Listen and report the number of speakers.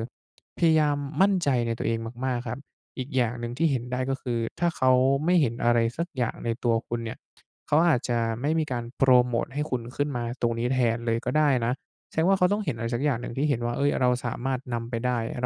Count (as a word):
one